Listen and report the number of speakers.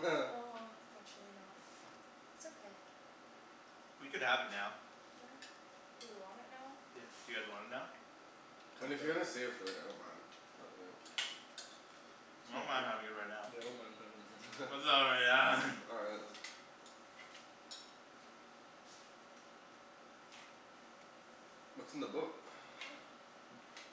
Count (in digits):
4